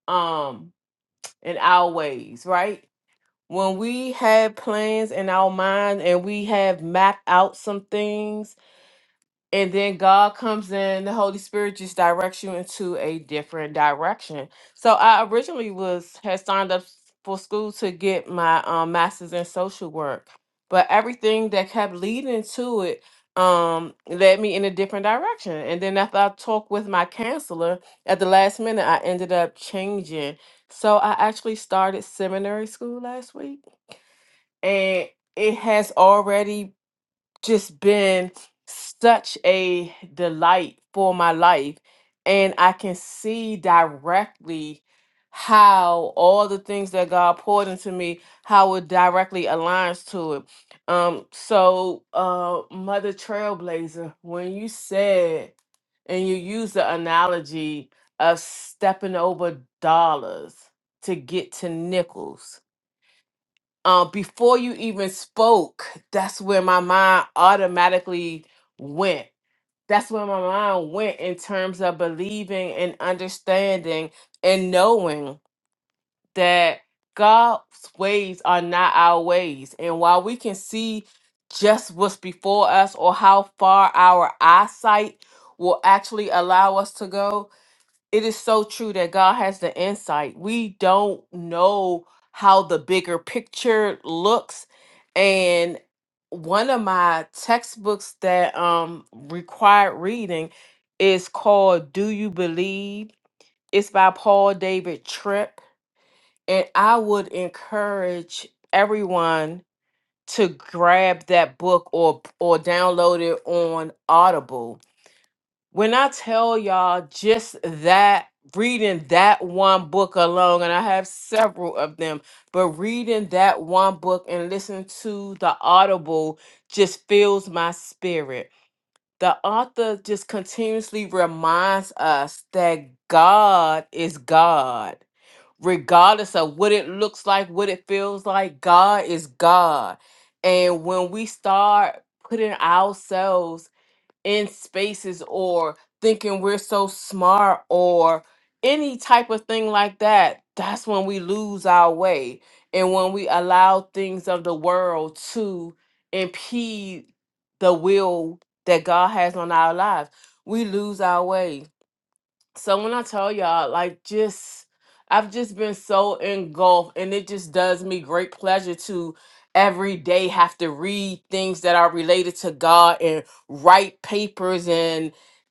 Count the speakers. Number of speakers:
1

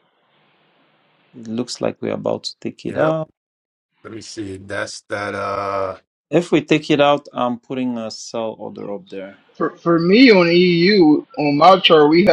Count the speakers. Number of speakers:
3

